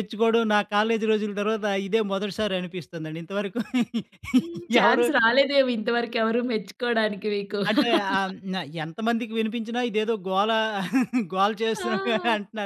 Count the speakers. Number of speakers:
2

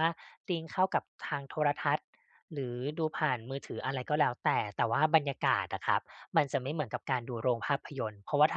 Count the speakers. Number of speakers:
1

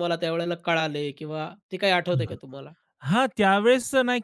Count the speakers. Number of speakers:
2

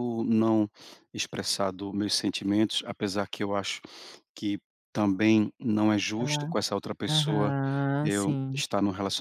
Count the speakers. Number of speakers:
2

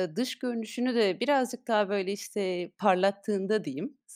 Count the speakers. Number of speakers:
1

